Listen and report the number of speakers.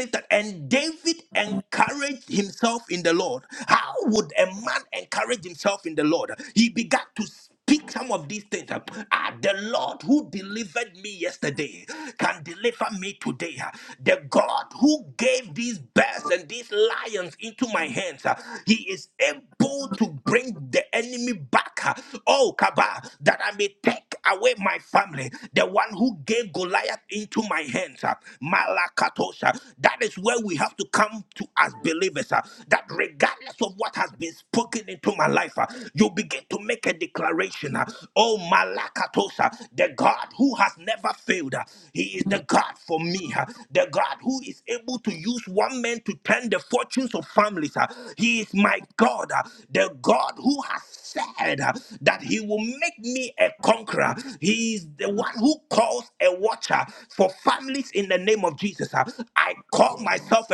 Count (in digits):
1